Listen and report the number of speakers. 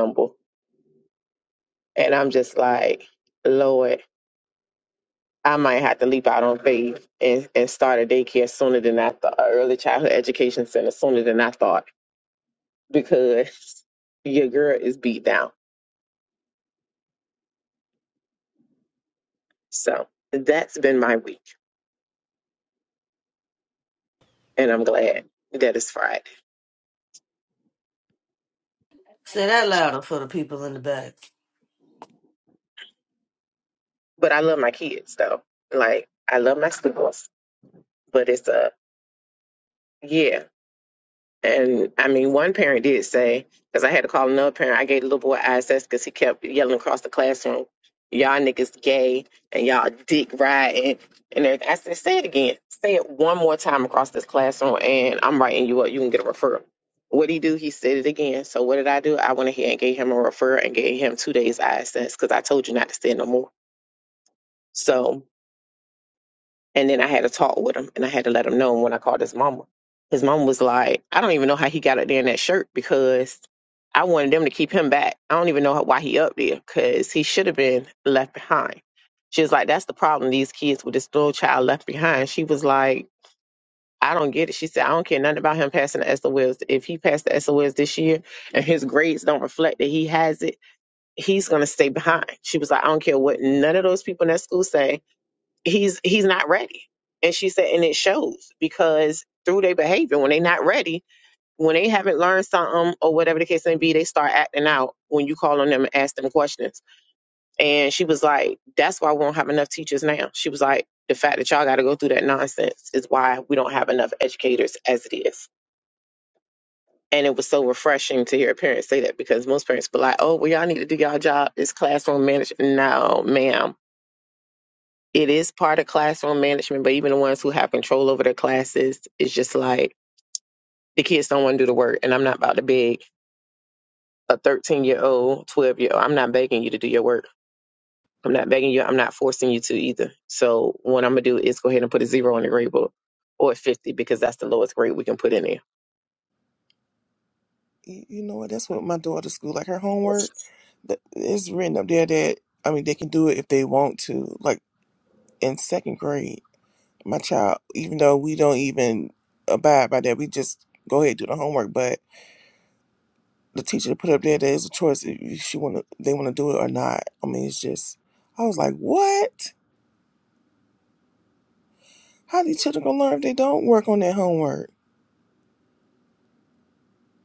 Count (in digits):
3